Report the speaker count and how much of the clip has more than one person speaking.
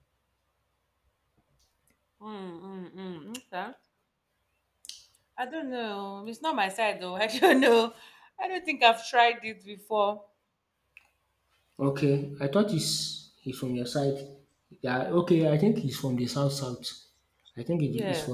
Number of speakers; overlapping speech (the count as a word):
two, about 2%